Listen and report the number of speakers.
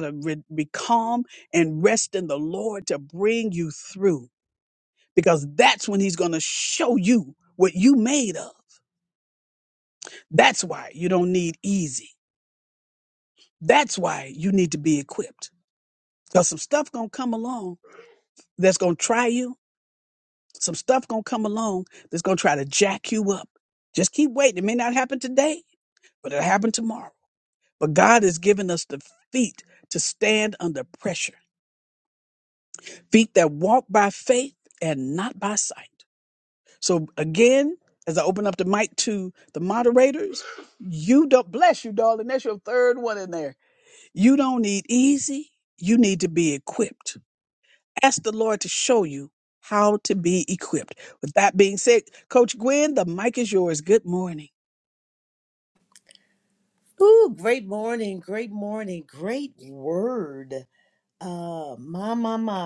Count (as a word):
two